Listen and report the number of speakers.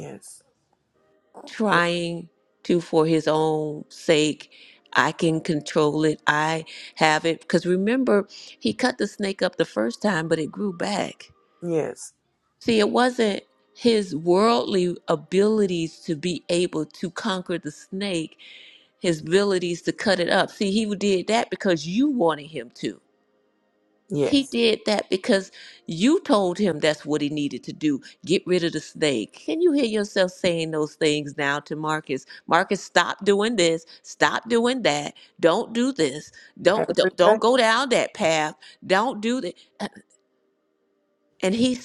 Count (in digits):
2